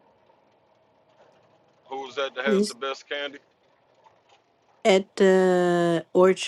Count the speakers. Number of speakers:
two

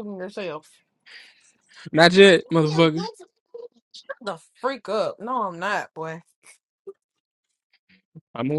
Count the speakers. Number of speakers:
two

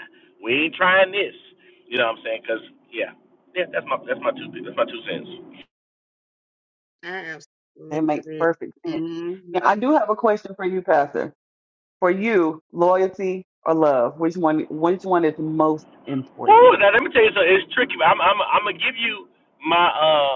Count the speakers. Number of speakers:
three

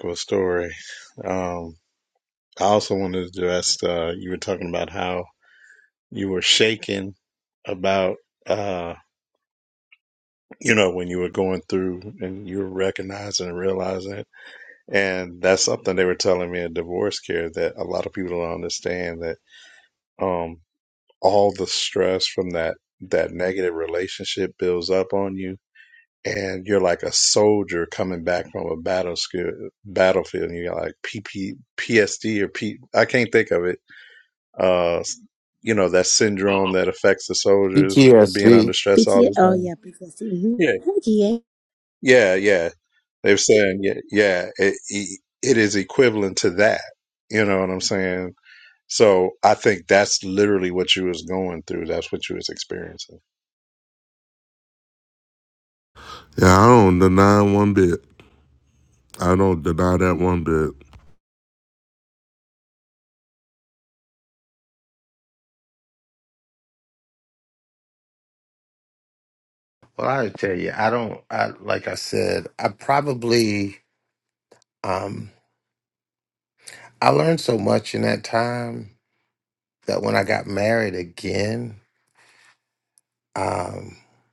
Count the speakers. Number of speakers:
four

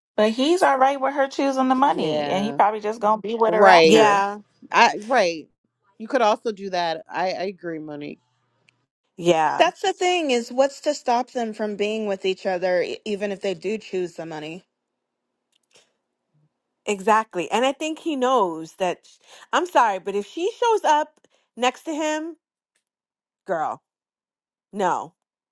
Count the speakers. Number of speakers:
four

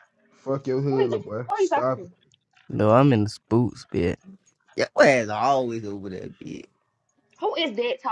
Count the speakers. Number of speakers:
four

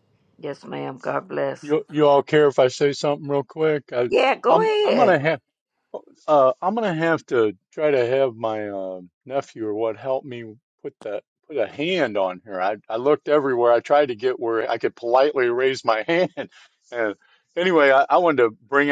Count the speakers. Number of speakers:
two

